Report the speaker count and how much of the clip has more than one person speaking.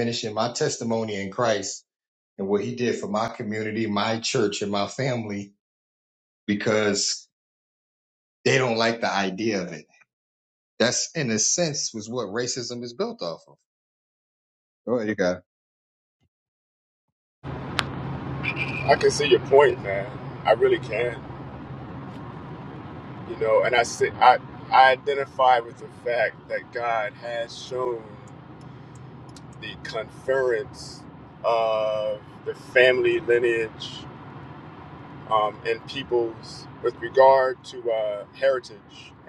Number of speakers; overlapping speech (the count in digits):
2, no overlap